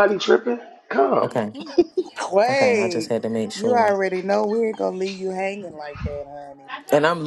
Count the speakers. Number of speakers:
three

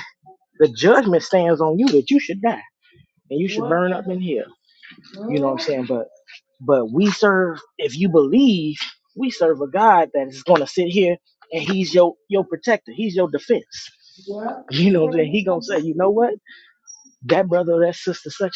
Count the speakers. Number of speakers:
two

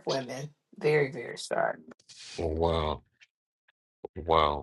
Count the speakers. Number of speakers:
two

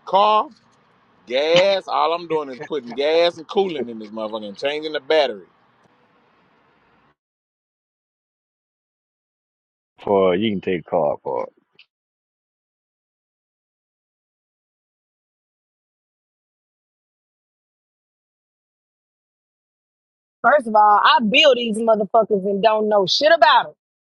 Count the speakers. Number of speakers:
three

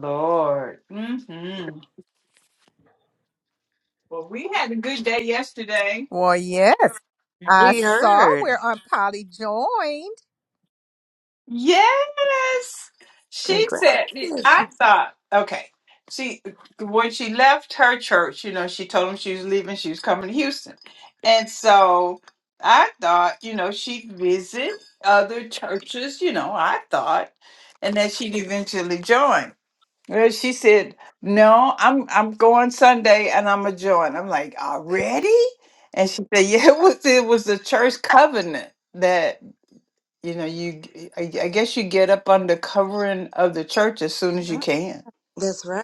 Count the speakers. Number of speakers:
three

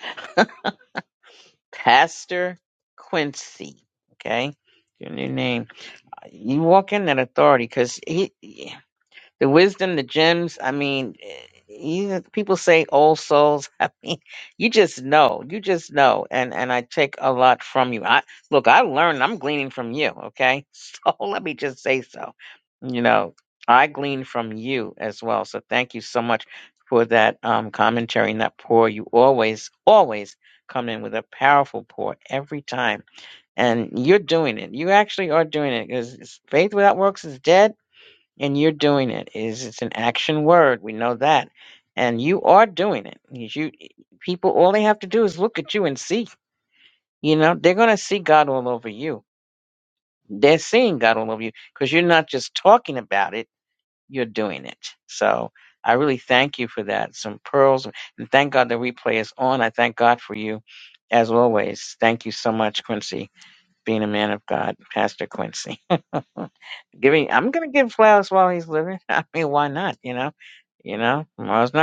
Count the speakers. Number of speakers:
one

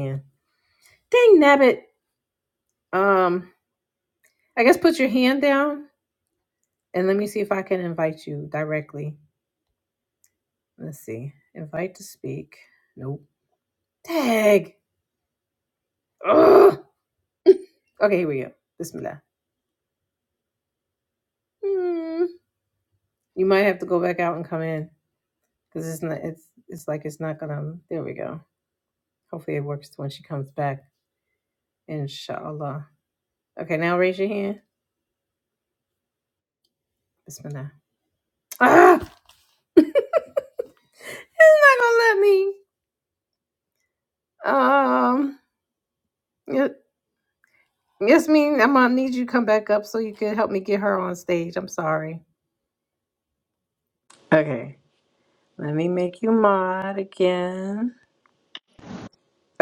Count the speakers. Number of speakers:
one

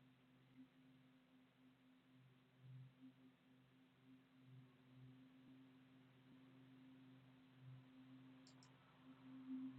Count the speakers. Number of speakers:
zero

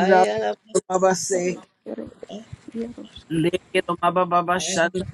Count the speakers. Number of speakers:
three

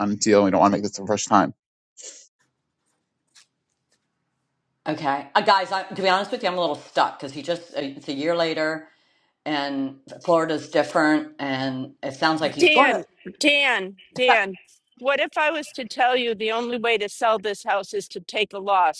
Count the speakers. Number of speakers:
three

